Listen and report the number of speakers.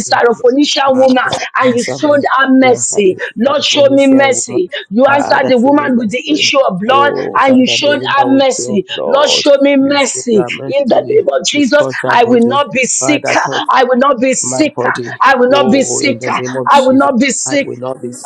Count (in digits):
2